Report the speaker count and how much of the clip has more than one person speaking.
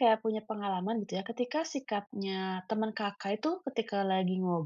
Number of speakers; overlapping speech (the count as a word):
one, no overlap